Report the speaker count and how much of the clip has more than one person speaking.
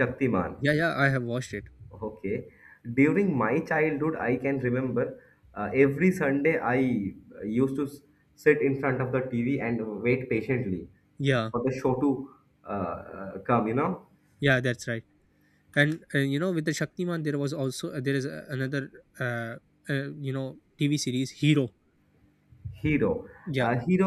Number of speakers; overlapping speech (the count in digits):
2, about 1%